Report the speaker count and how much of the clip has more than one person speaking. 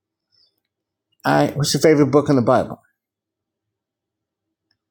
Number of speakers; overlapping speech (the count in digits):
1, no overlap